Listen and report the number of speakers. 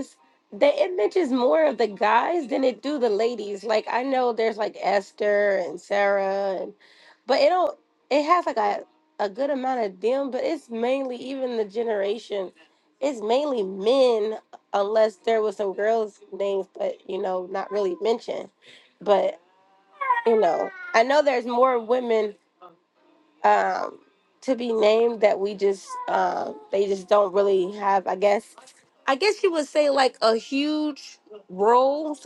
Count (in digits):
1